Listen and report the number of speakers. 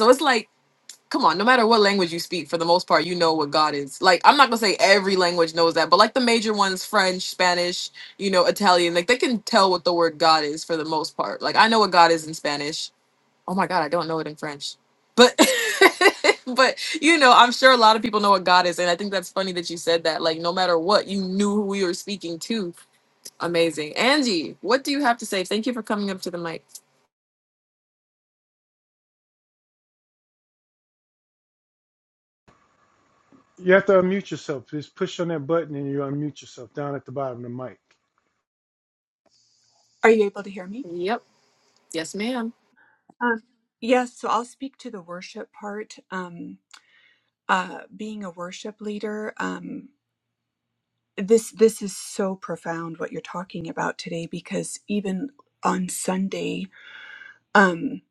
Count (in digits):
3